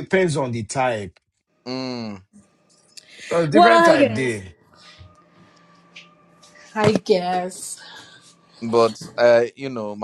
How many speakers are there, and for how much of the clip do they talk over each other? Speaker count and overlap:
three, about 8%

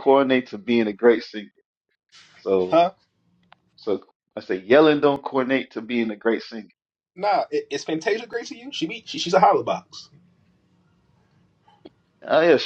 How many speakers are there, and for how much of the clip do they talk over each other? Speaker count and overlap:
two, under 1%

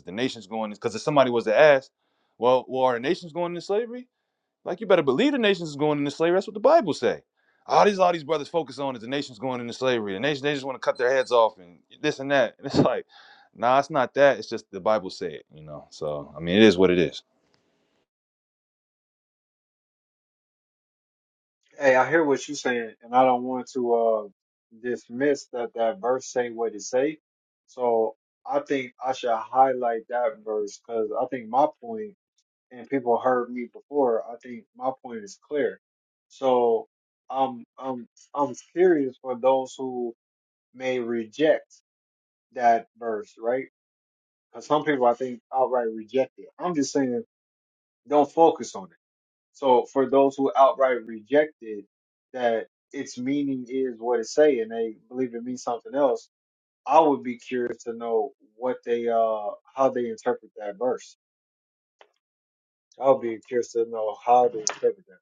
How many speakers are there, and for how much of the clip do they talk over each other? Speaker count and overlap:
two, no overlap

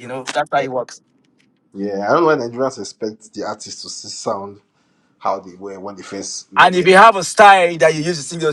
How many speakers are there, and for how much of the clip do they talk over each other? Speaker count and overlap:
two, about 4%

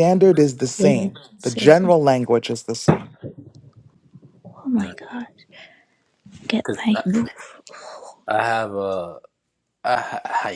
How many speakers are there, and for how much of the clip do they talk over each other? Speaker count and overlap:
three, about 9%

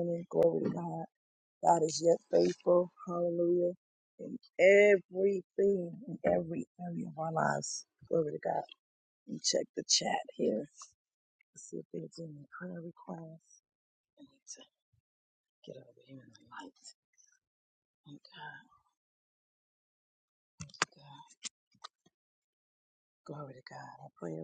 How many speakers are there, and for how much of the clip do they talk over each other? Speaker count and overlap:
one, no overlap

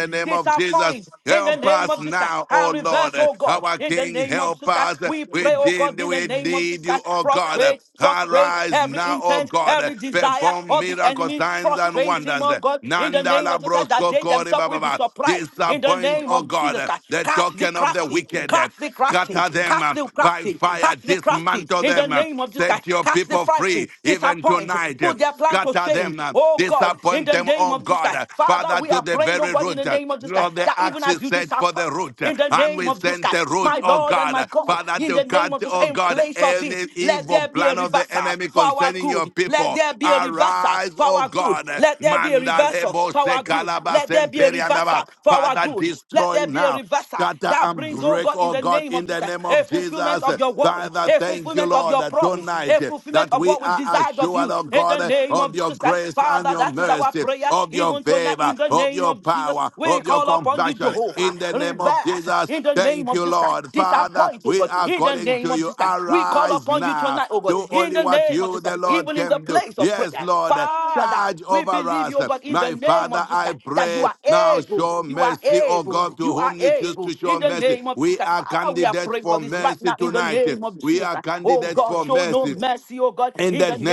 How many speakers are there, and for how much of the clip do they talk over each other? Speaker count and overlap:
two, about 93%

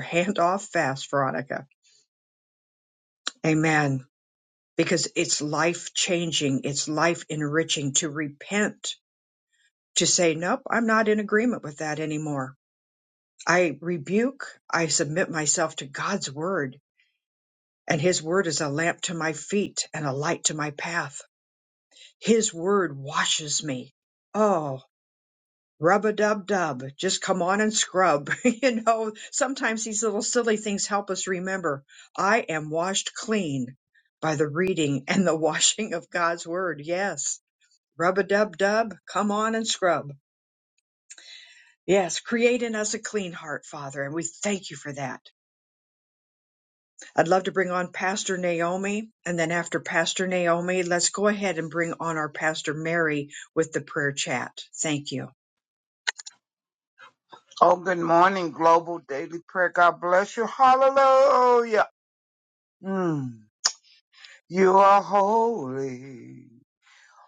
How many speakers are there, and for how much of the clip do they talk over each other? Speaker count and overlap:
two, no overlap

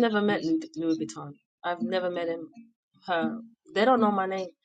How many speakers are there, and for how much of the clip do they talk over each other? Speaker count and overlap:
one, no overlap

